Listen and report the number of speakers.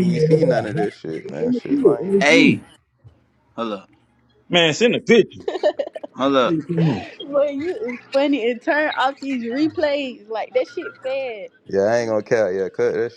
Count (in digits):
4